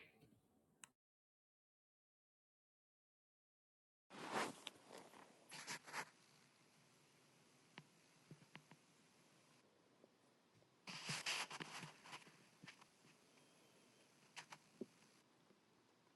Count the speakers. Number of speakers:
0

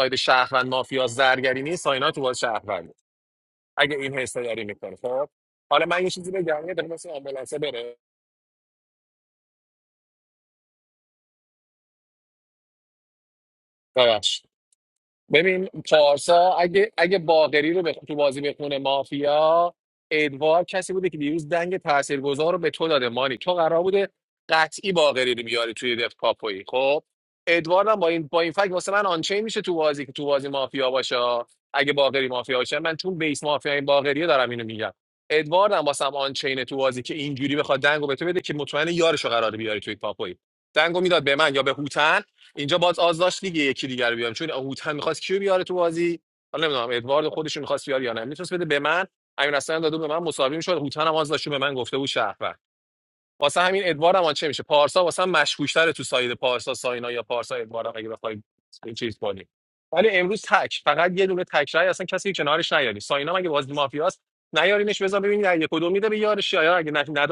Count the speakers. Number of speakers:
1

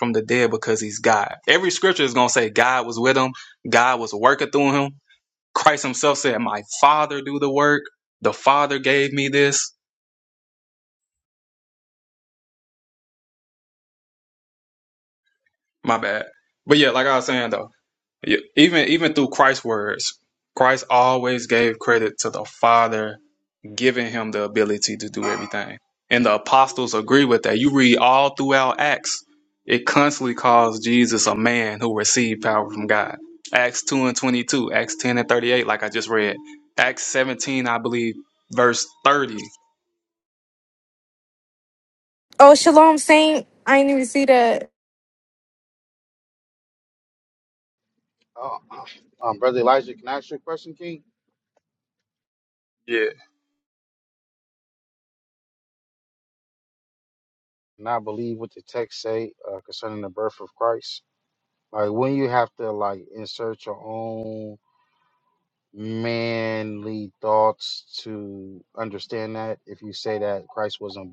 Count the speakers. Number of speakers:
3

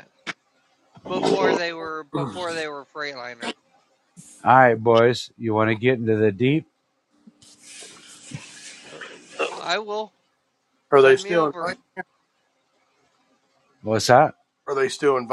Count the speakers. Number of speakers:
3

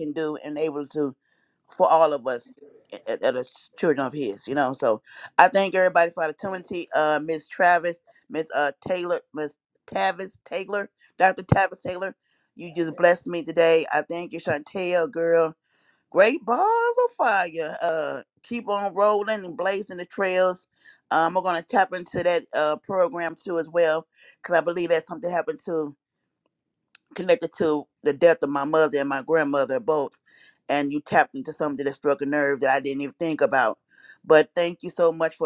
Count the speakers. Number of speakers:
1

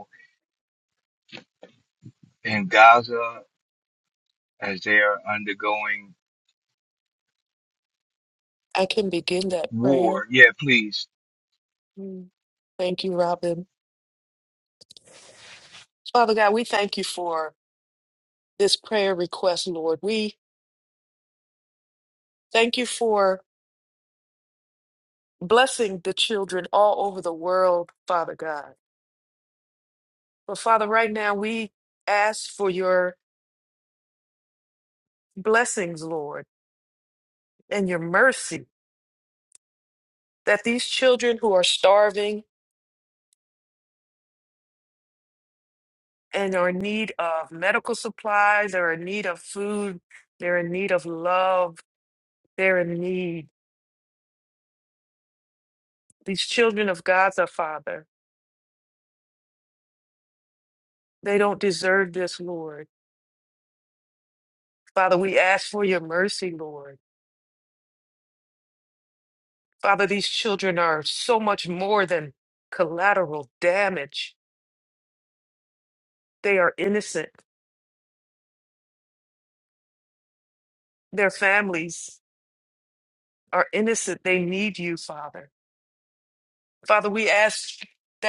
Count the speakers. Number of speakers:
2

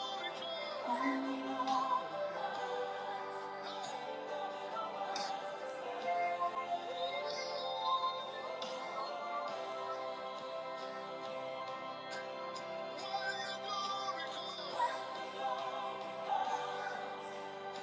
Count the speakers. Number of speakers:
0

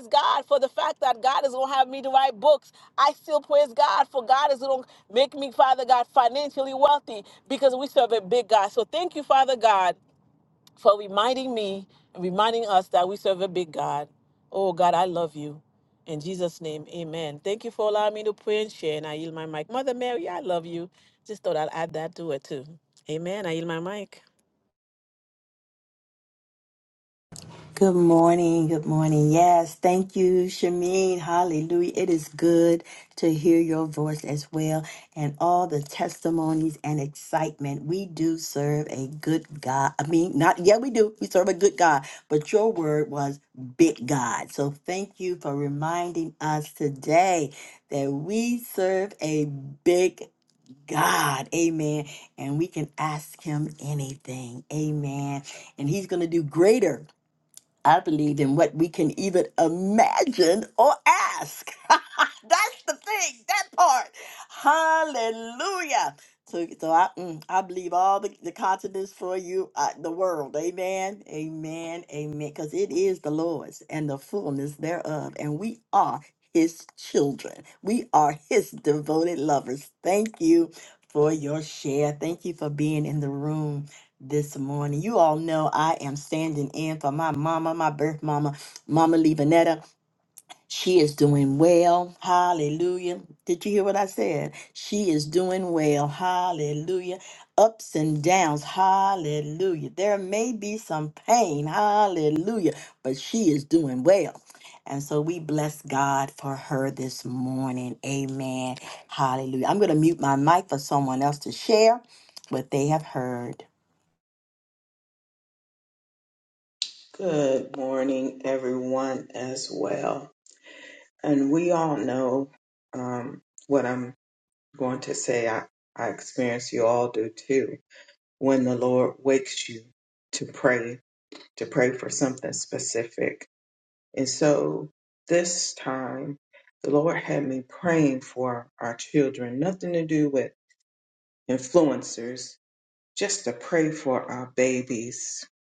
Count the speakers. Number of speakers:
3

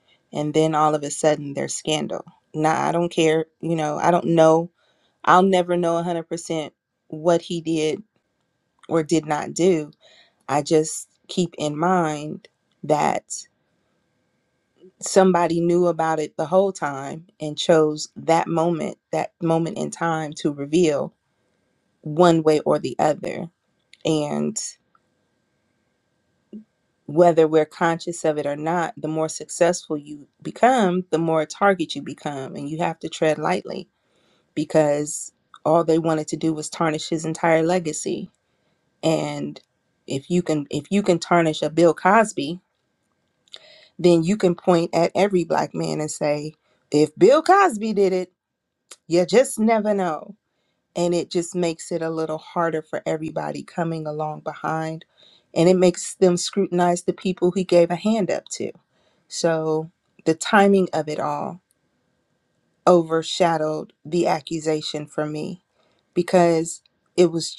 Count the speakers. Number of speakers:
1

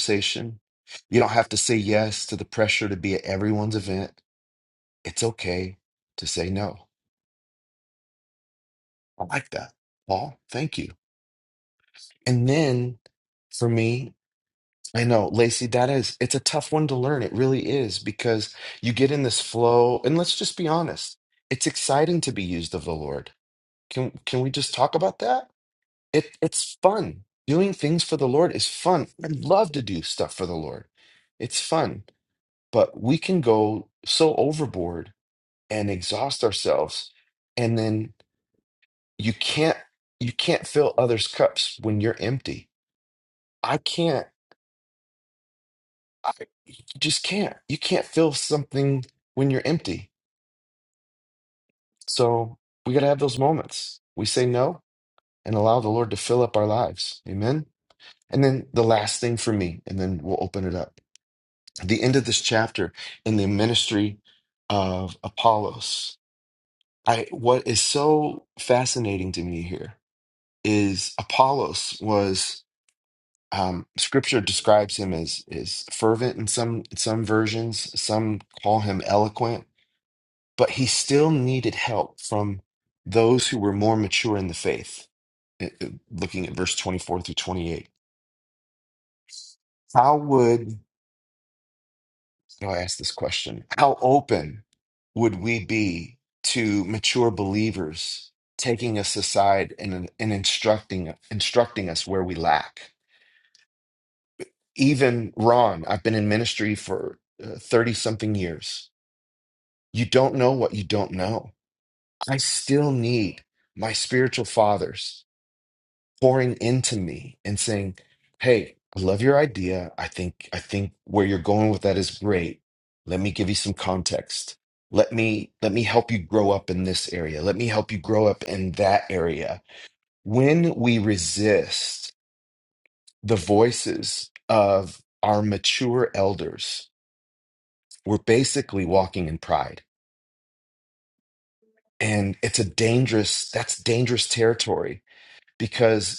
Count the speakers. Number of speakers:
1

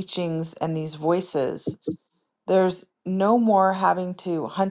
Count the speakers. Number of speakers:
1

